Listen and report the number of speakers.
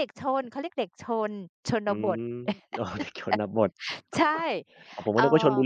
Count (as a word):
two